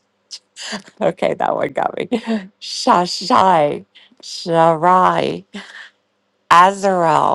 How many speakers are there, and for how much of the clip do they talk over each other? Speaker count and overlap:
one, no overlap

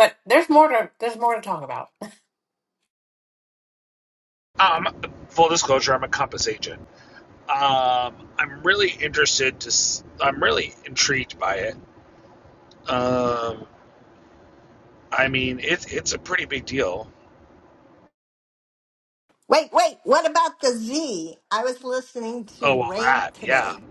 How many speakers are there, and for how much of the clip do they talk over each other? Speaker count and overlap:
three, about 5%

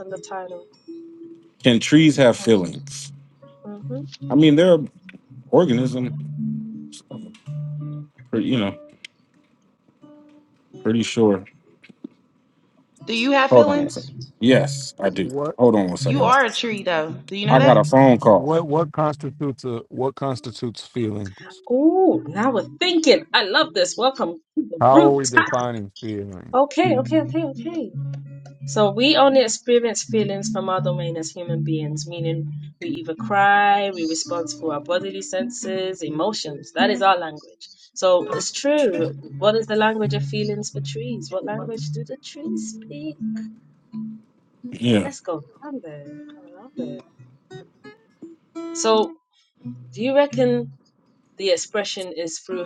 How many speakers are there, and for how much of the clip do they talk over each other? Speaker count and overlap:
four, about 4%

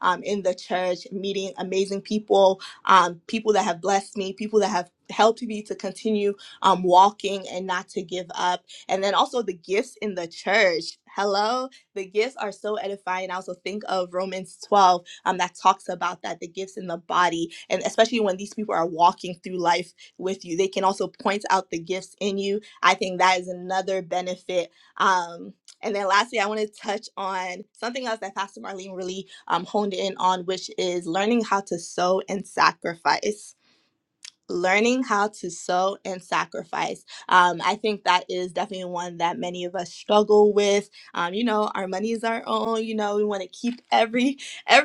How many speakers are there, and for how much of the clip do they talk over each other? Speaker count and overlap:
one, no overlap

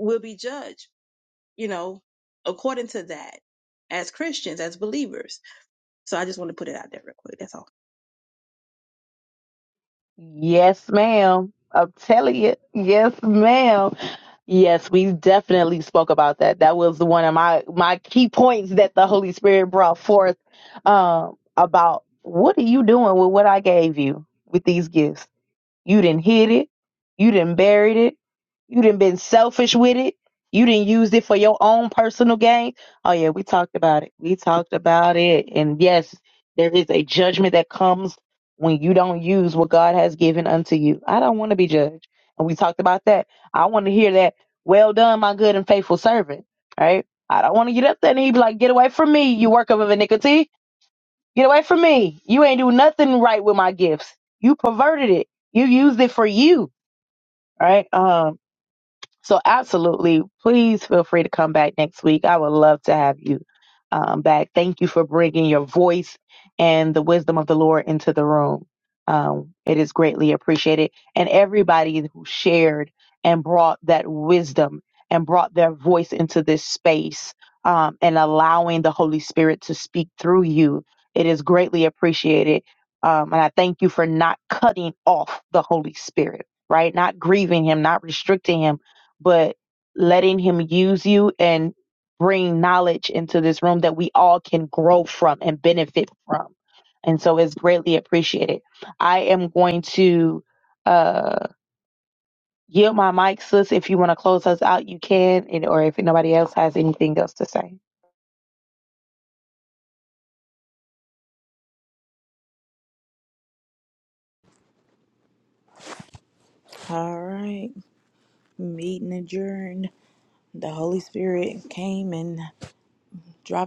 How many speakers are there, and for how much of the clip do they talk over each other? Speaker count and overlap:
three, no overlap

